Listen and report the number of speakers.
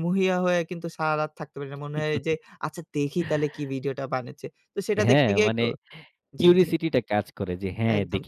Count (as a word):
two